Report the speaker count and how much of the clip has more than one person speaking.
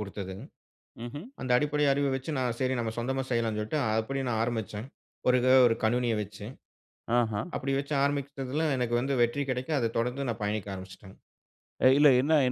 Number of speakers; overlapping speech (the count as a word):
two, no overlap